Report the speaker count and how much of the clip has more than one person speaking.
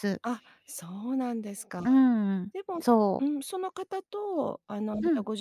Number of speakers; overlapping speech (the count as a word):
two, about 10%